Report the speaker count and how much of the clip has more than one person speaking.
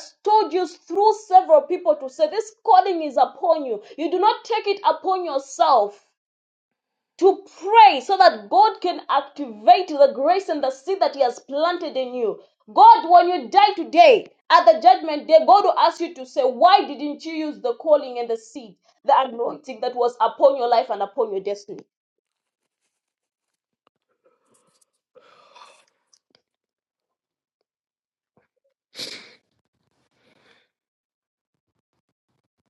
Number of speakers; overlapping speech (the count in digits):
1, no overlap